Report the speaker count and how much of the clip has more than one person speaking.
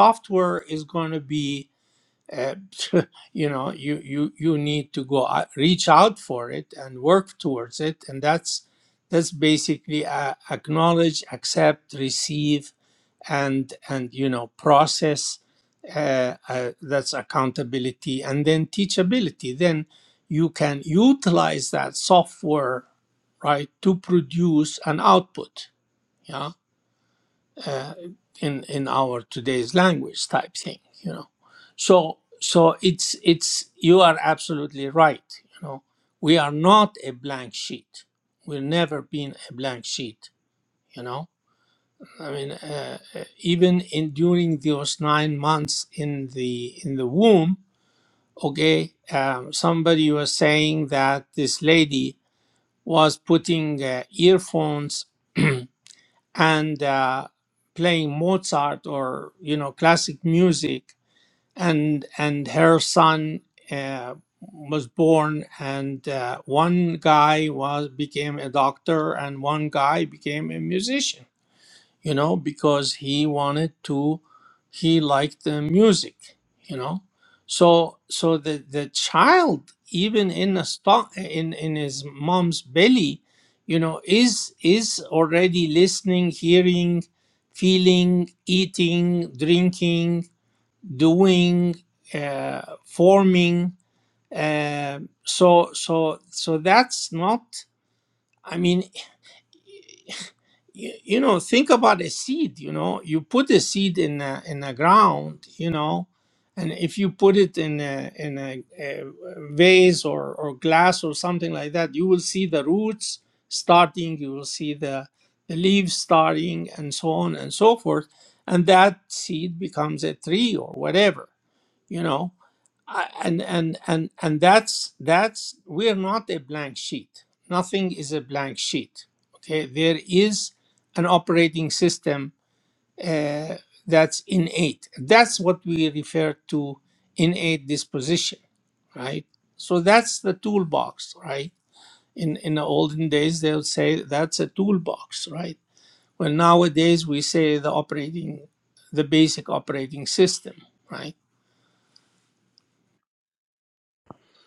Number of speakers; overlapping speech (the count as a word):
one, no overlap